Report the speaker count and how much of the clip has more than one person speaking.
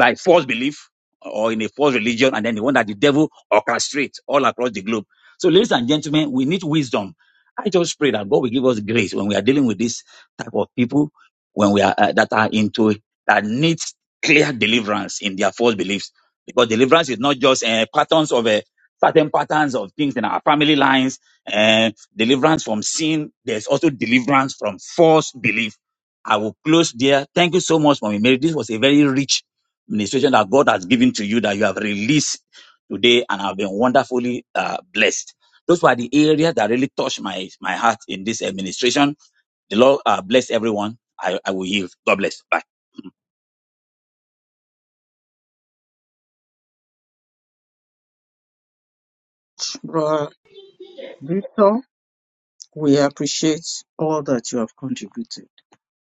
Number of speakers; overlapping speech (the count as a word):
two, no overlap